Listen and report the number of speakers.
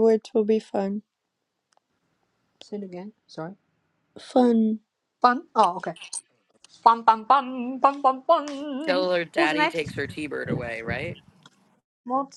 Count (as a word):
three